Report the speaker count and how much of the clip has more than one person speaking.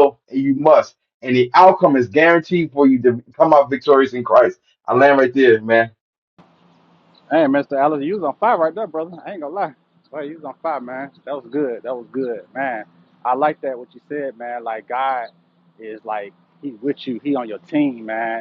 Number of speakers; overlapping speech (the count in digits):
2, no overlap